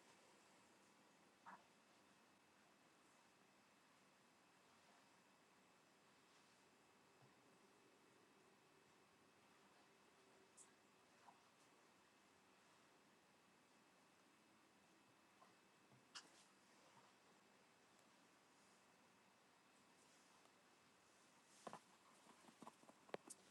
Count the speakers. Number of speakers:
0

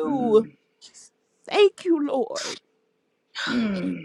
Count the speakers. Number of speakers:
2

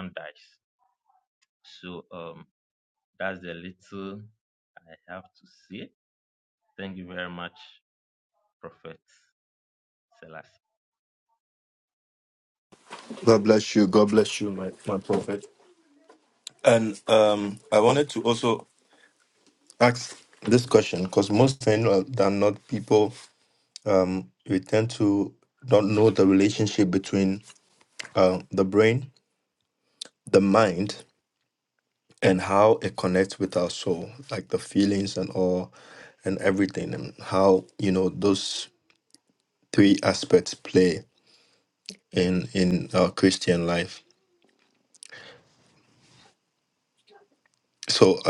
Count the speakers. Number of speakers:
2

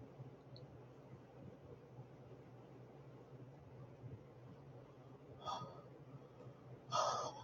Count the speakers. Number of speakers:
0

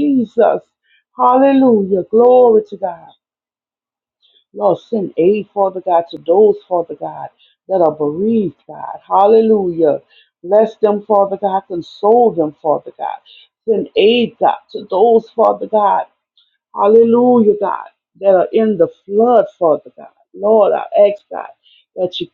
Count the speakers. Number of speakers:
1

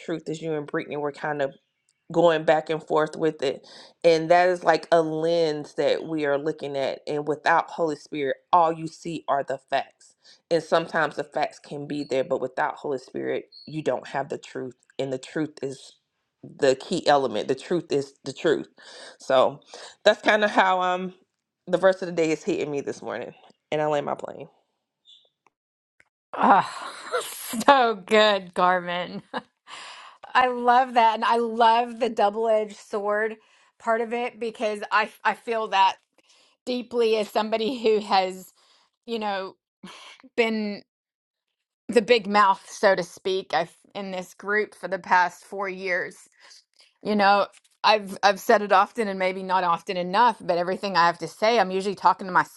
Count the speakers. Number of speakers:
2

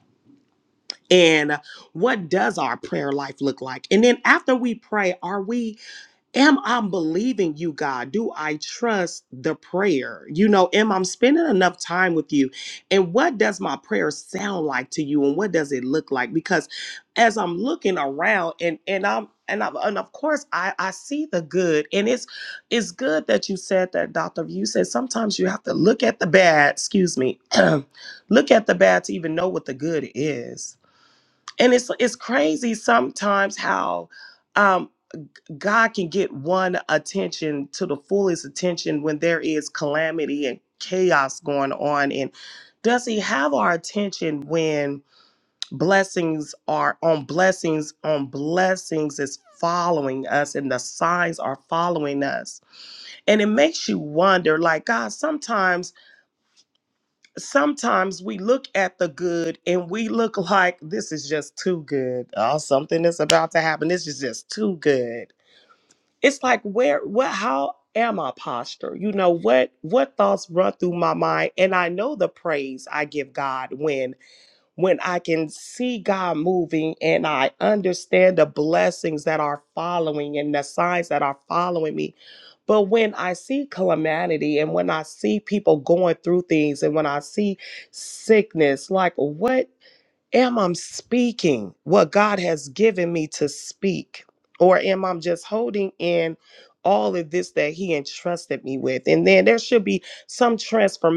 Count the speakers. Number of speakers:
1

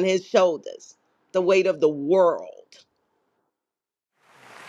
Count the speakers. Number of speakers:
1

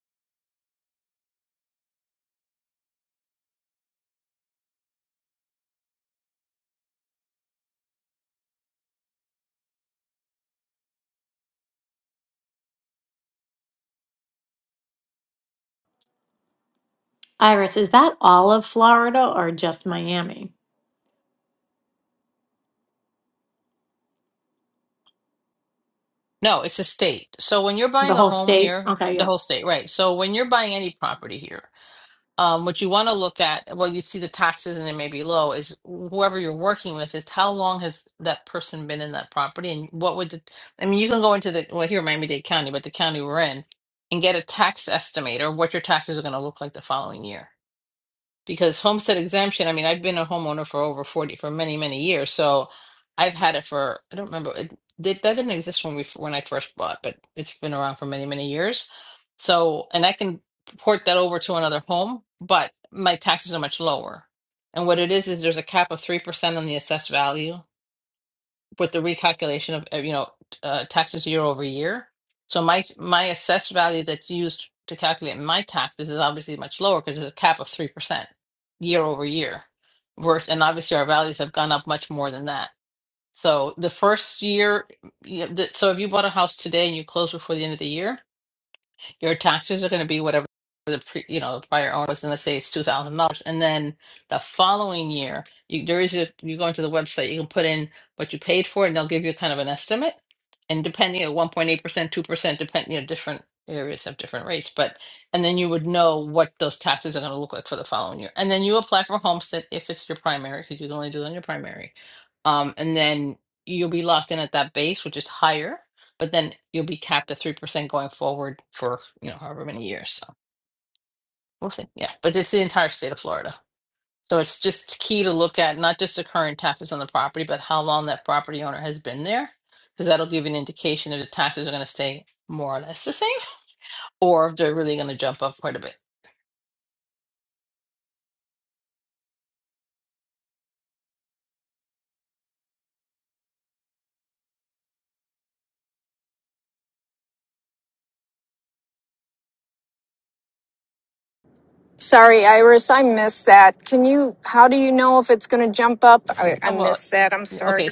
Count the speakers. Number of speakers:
3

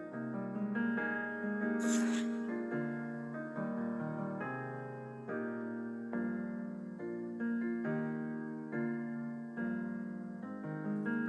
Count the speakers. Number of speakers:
0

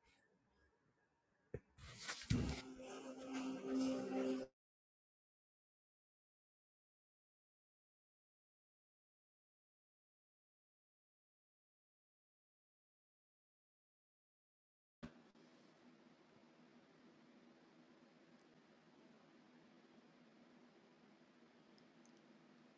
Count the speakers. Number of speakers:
0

